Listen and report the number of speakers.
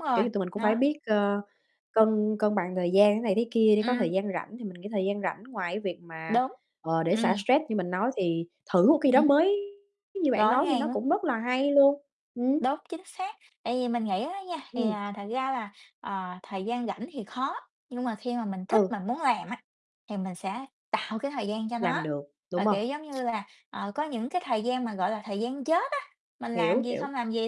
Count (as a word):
two